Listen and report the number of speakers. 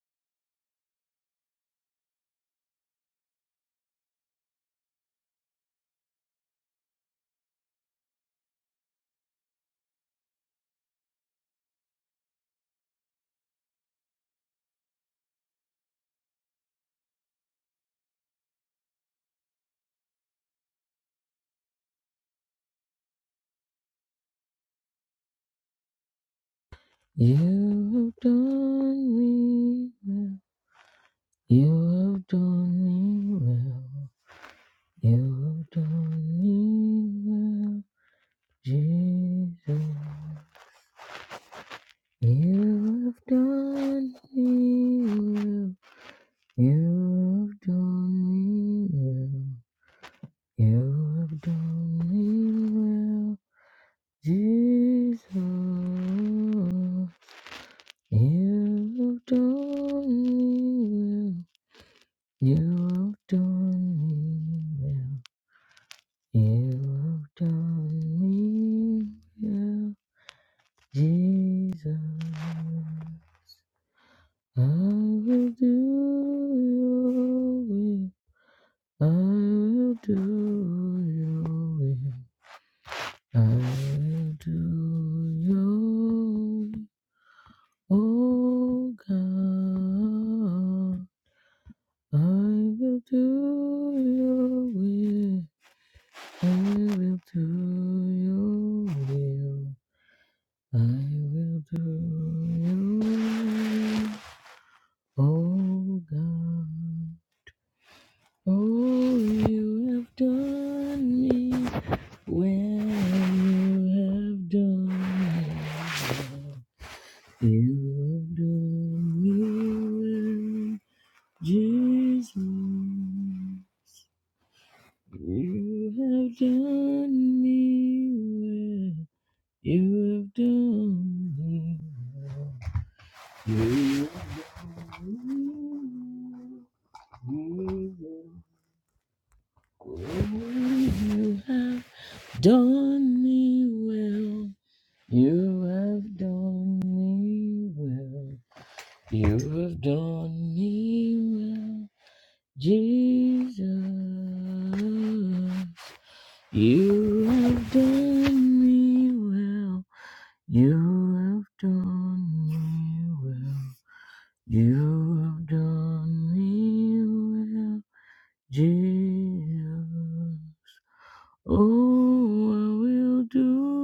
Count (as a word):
one